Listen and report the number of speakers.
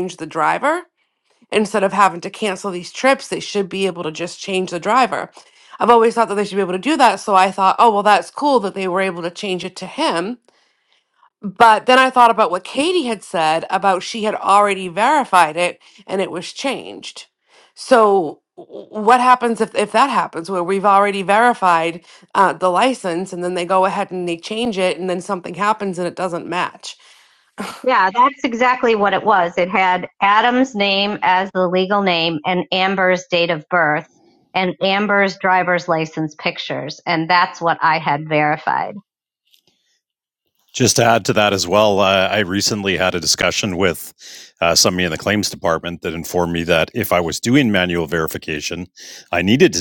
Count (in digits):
3